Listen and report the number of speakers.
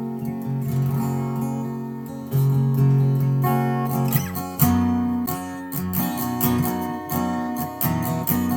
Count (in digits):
0